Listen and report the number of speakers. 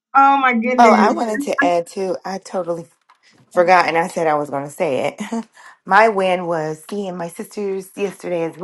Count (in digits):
2